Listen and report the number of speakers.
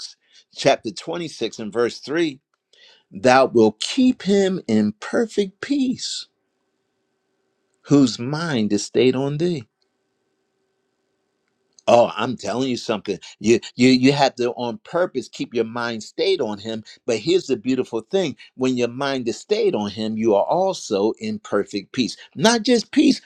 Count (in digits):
1